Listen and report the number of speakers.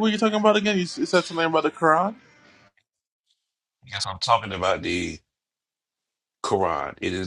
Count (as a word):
two